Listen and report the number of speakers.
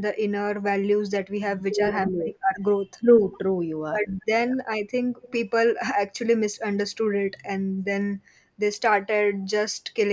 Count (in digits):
2